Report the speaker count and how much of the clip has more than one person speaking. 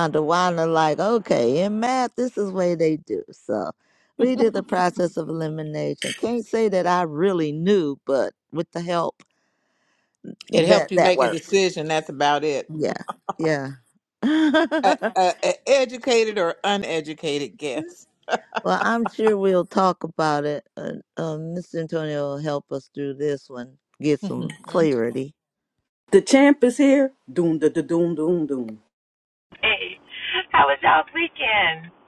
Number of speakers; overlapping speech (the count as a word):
four, about 6%